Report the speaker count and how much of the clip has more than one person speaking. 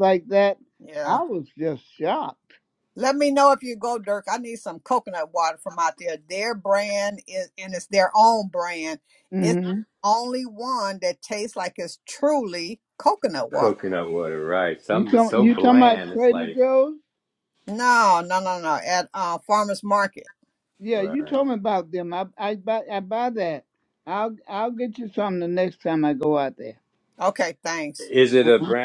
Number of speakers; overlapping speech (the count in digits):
3, about 8%